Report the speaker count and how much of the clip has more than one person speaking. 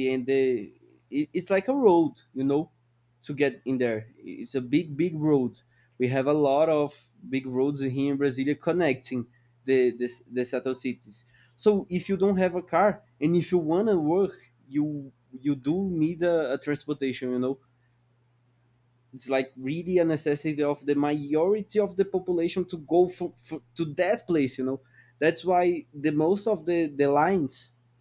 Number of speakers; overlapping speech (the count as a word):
one, no overlap